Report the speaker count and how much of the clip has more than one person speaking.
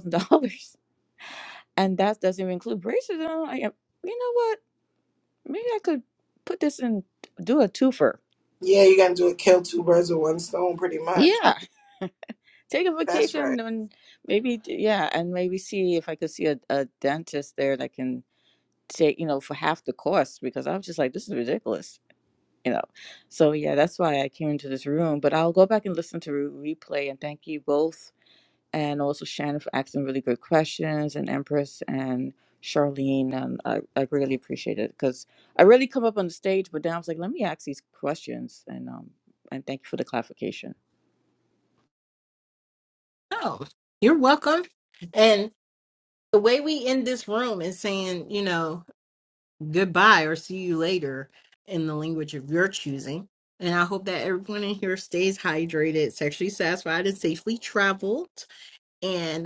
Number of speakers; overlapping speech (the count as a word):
three, about 1%